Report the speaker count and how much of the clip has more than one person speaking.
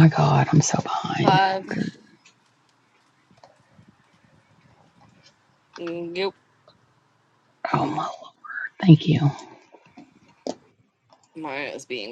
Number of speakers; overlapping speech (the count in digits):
2, about 4%